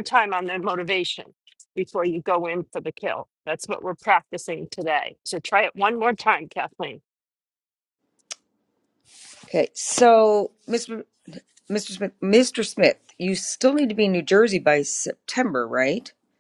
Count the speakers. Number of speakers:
2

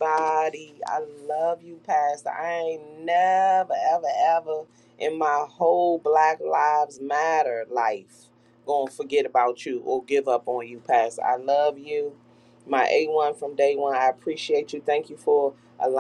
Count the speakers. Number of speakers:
1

